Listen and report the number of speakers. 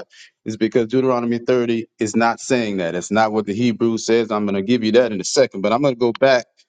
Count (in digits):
1